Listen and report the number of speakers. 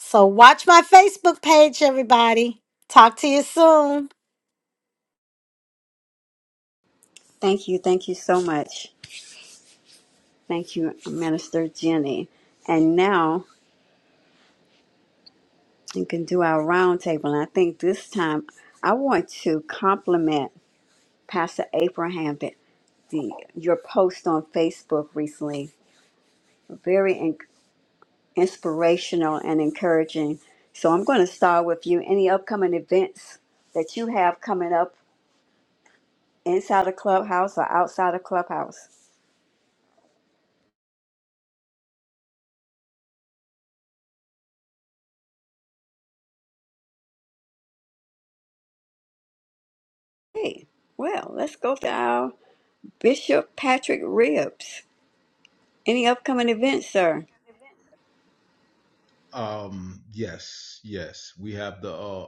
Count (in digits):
3